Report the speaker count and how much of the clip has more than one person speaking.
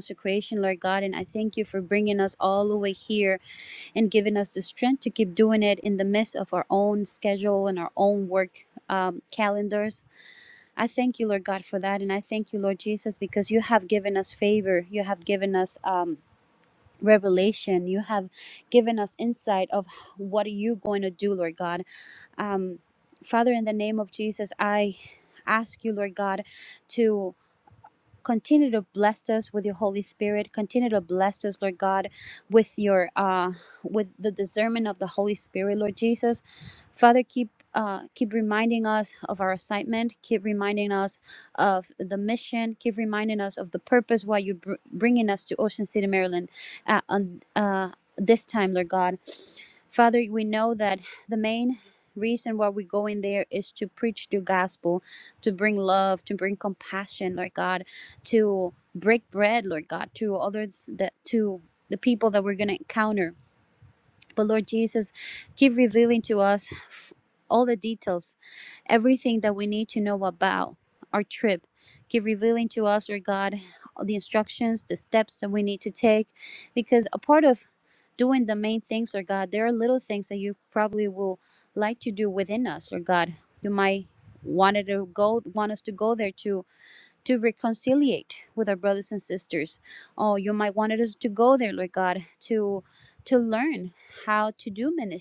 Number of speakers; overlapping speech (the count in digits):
1, no overlap